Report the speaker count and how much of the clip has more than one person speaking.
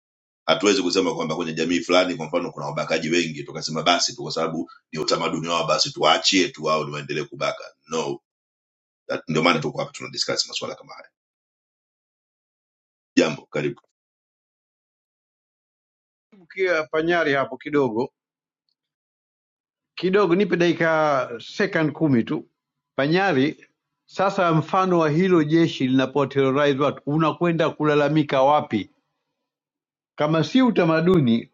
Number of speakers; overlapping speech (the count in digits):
2, no overlap